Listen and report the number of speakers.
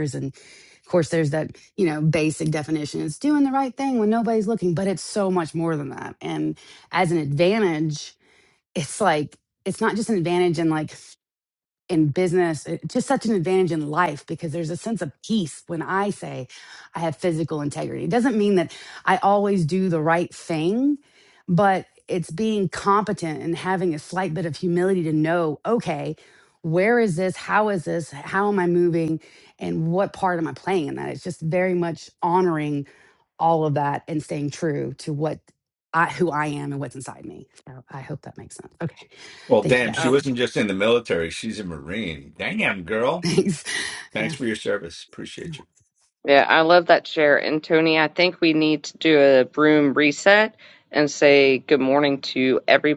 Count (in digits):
3